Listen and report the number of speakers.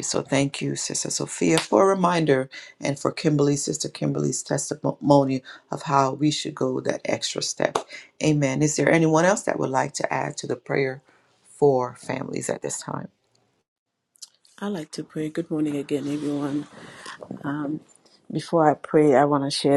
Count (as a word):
two